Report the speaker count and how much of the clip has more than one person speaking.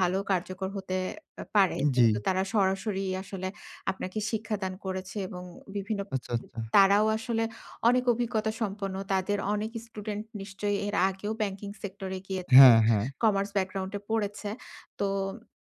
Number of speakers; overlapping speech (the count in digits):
2, about 2%